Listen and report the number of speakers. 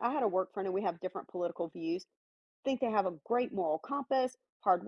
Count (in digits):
1